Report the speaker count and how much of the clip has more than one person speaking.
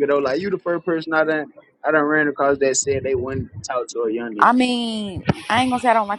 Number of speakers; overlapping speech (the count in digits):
2, about 1%